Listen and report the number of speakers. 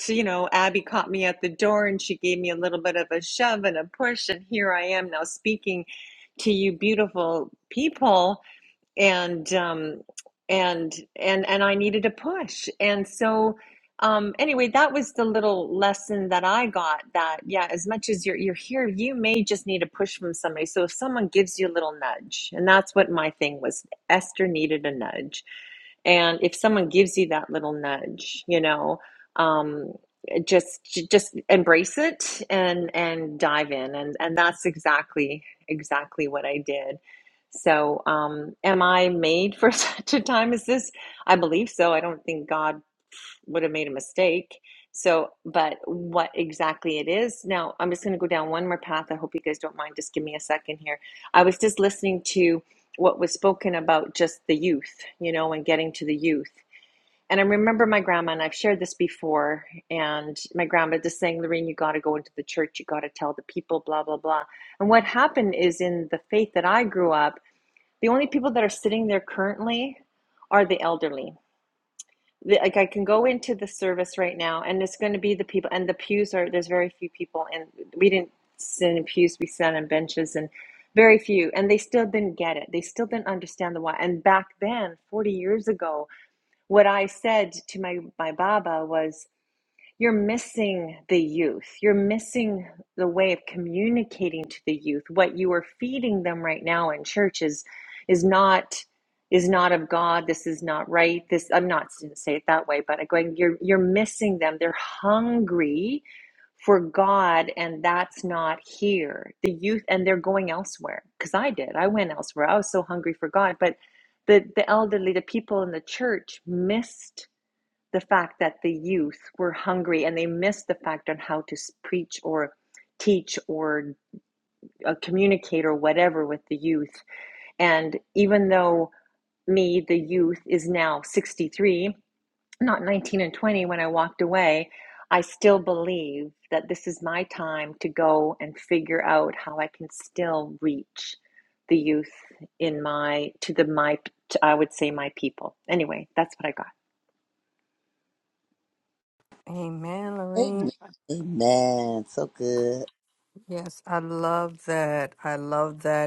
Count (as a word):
three